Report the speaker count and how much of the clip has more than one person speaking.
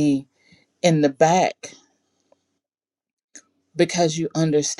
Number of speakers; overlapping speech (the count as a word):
one, no overlap